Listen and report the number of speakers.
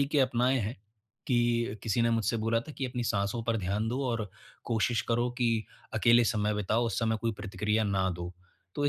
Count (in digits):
1